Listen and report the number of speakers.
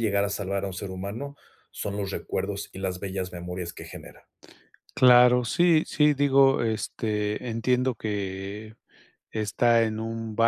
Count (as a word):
two